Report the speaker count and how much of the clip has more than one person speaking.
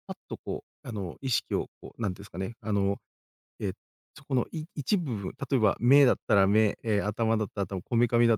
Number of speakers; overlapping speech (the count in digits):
1, no overlap